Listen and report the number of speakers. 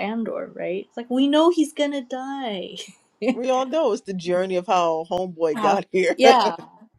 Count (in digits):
2